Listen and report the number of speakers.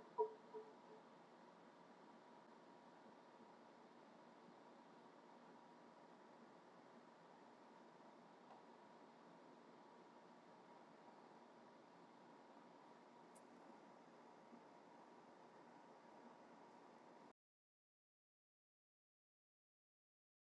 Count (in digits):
0